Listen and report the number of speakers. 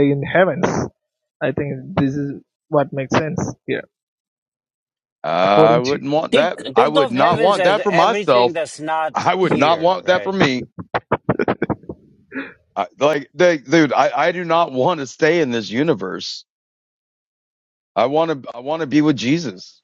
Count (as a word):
three